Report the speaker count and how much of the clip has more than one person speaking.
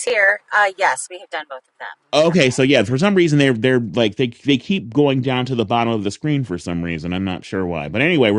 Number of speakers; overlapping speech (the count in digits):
2, about 10%